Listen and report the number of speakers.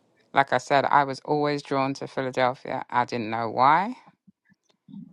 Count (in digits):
1